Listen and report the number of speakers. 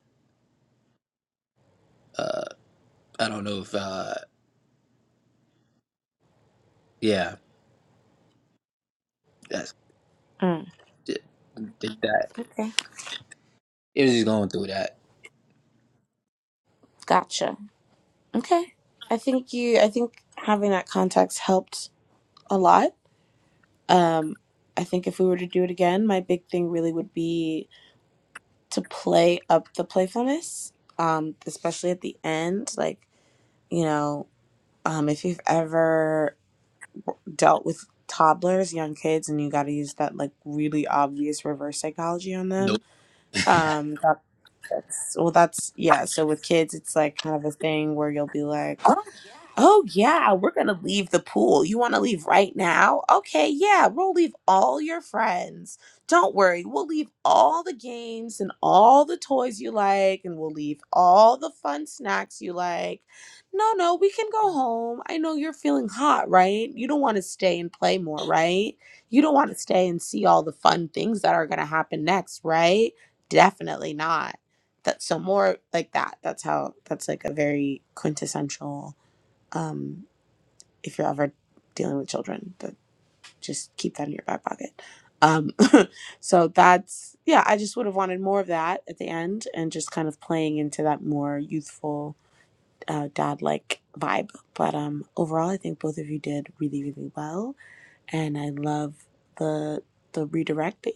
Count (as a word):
two